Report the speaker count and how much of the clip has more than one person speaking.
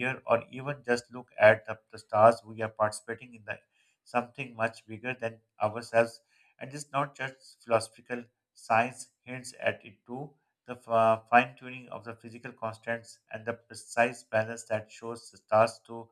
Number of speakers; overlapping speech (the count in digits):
1, no overlap